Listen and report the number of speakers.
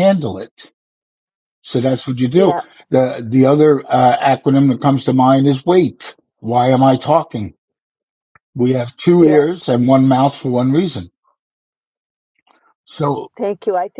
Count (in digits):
2